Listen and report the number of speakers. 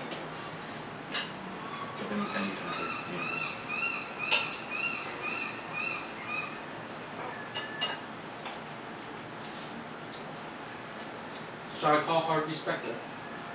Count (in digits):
2